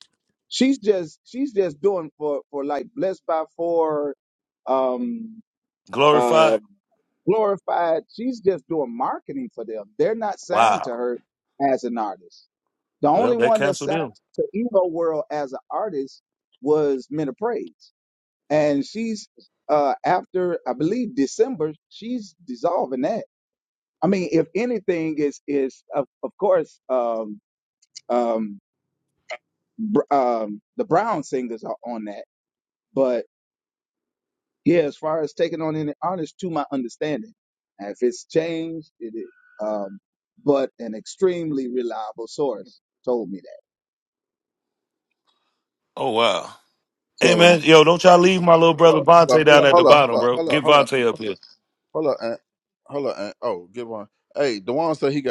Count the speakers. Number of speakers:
three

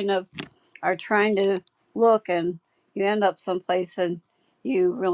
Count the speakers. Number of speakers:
one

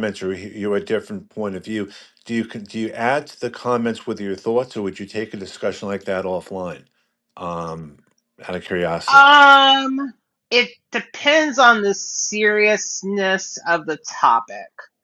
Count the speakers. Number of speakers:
two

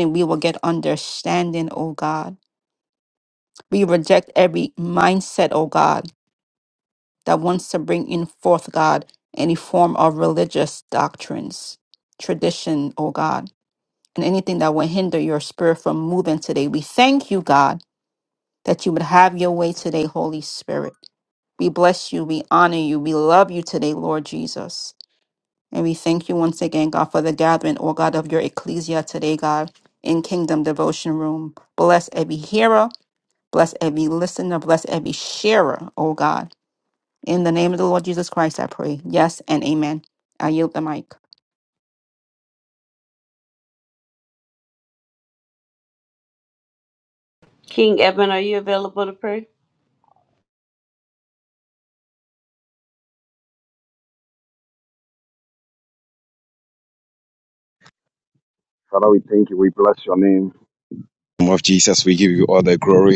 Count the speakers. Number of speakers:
three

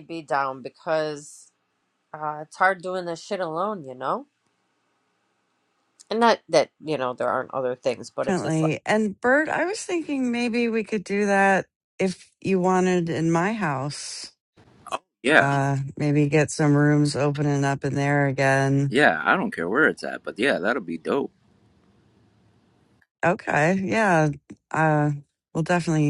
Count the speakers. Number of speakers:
three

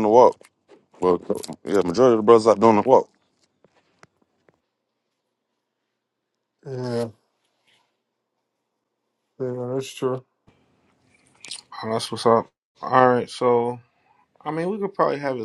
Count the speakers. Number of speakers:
three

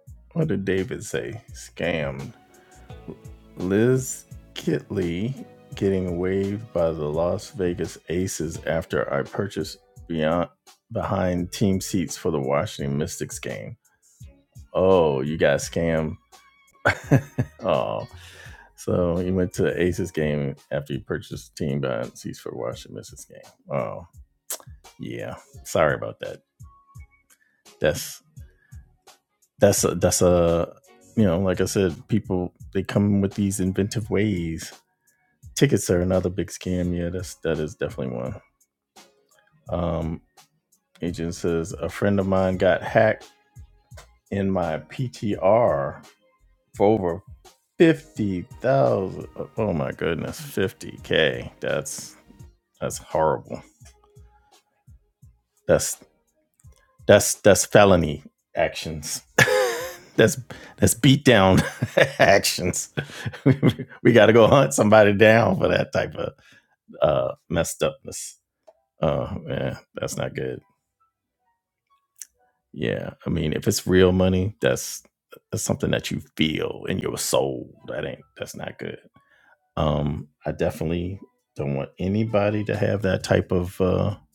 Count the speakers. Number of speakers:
one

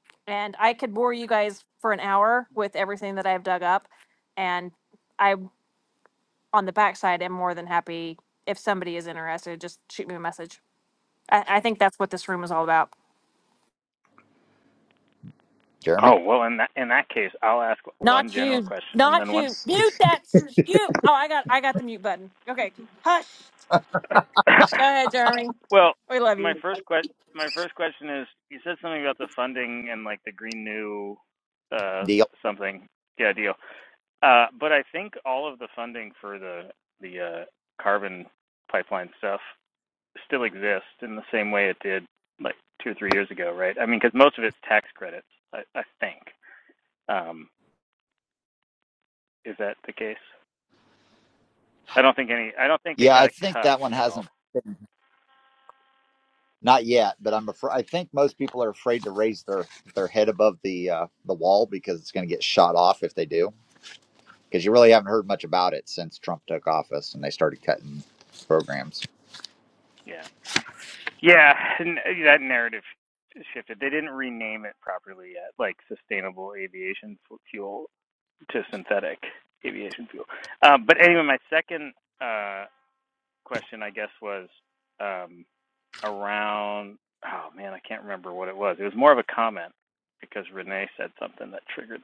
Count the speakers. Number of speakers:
three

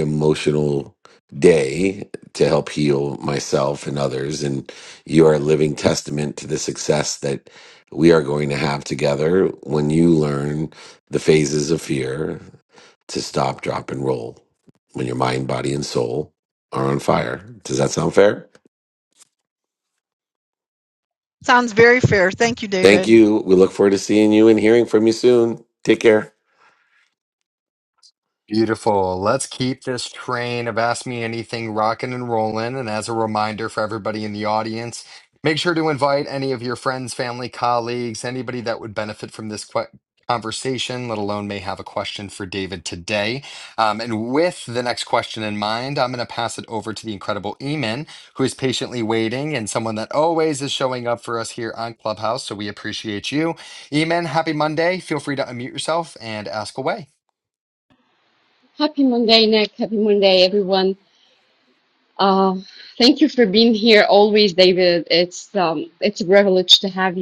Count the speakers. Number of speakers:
four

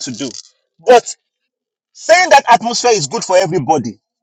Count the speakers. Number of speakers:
one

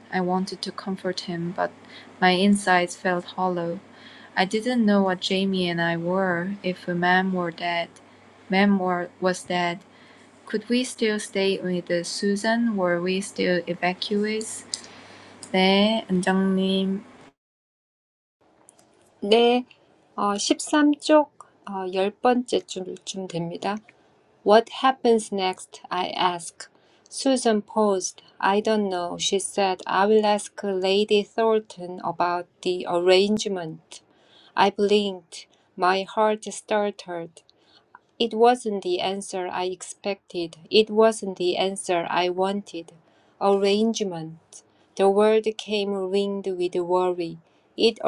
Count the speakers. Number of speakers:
two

